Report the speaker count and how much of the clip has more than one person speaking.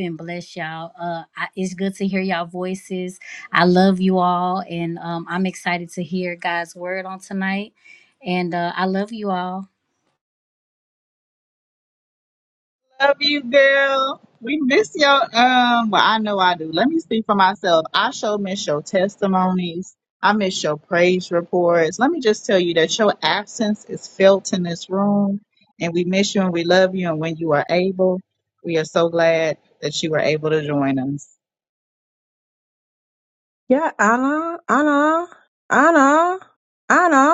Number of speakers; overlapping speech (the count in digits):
3, no overlap